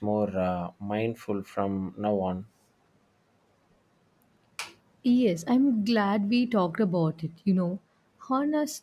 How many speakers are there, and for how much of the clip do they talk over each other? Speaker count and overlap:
2, no overlap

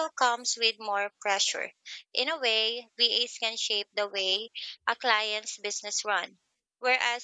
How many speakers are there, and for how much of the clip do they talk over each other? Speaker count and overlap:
1, no overlap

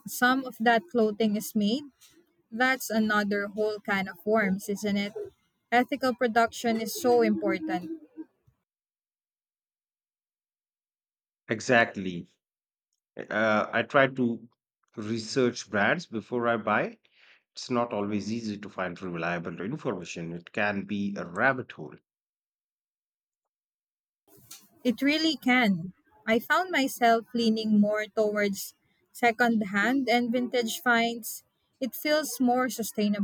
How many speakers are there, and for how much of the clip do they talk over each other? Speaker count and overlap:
2, no overlap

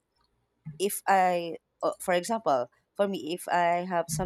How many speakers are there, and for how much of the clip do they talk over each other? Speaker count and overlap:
1, no overlap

